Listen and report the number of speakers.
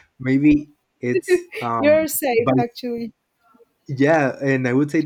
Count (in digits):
2